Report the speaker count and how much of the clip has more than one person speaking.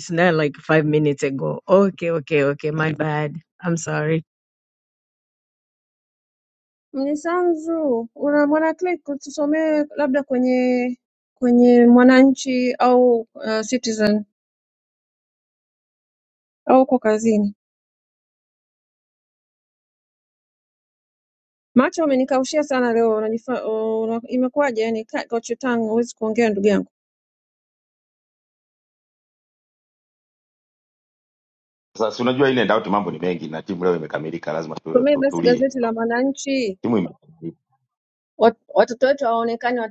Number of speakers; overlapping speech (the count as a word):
three, about 2%